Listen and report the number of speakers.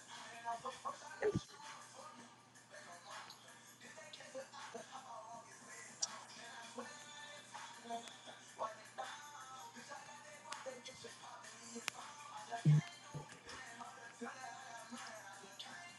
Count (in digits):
0